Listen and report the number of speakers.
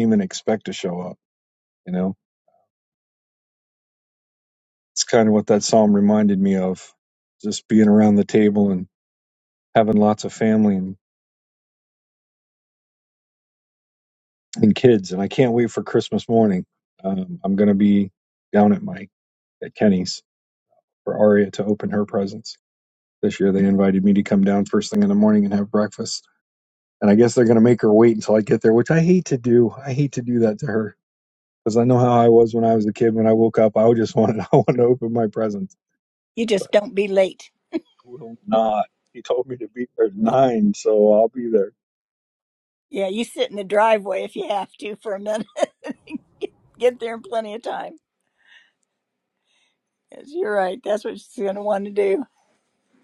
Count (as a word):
two